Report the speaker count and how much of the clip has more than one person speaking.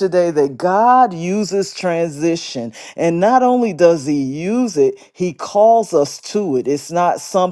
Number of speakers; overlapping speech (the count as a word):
one, no overlap